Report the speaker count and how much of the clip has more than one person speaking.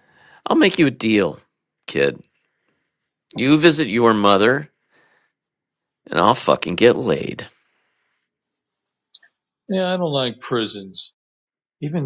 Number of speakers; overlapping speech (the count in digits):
2, no overlap